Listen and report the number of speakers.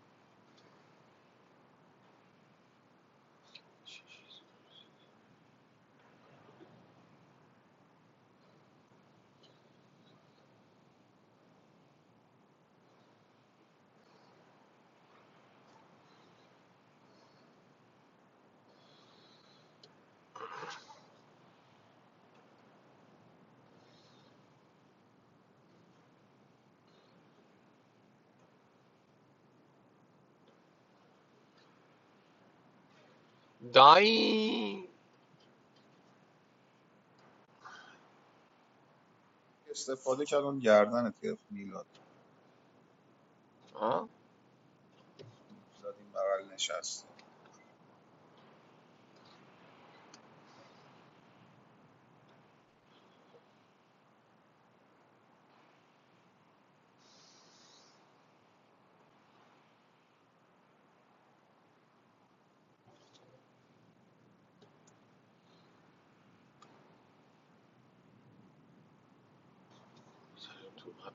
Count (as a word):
two